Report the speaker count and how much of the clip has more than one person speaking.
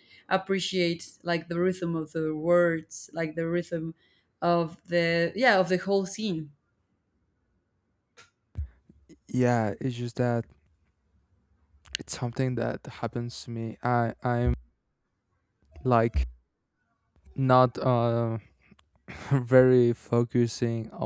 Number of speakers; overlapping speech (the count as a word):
two, no overlap